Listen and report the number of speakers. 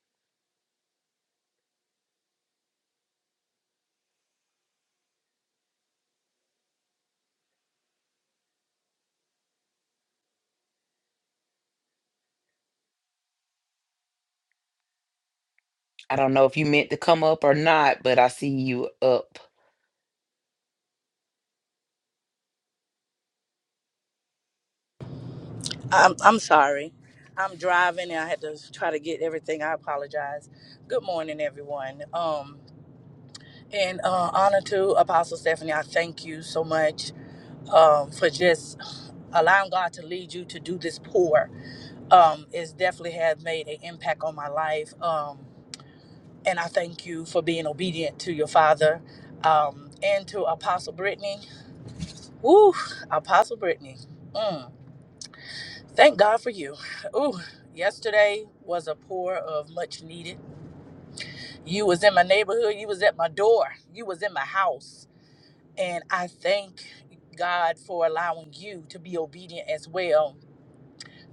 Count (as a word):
two